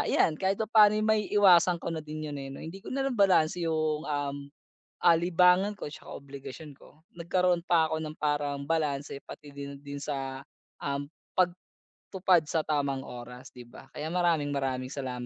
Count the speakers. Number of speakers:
1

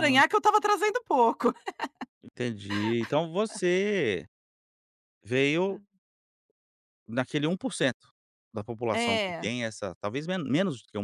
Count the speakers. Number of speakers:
2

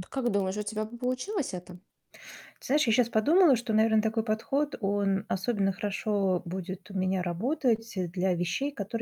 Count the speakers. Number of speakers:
2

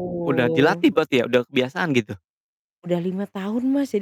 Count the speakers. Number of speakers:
2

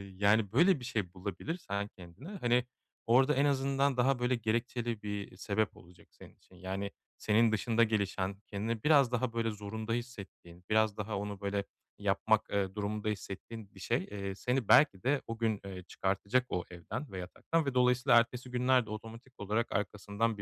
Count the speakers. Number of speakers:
1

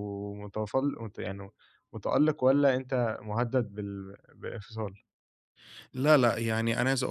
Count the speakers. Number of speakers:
2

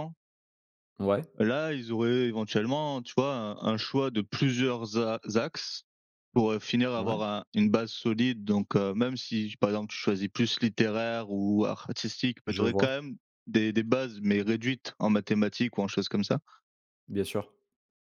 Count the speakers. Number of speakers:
2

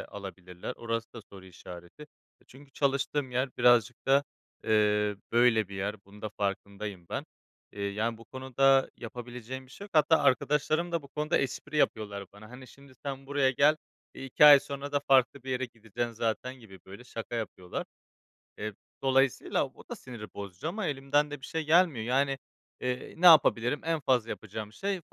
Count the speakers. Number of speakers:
1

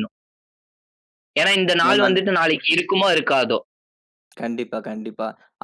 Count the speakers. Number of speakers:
2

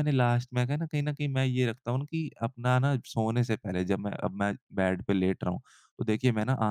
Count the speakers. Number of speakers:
1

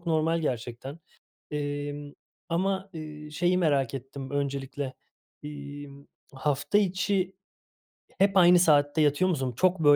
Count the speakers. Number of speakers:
1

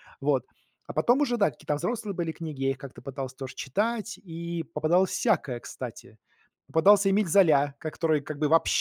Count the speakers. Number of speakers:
1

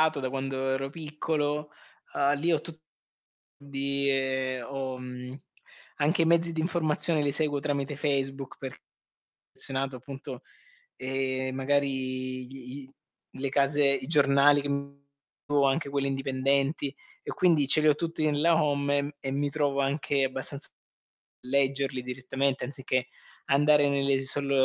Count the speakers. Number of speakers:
1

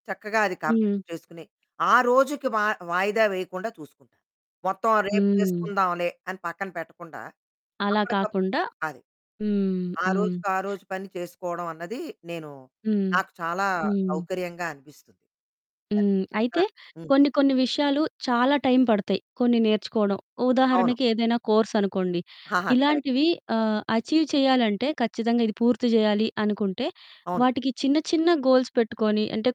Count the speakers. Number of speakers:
2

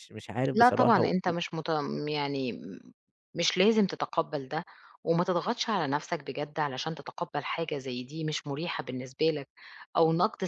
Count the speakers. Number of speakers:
2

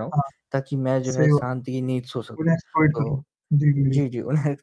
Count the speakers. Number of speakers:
2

